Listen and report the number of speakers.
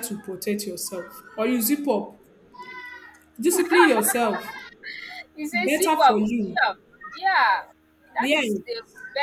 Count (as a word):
two